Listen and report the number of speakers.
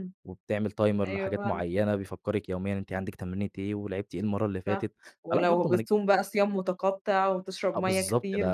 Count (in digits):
2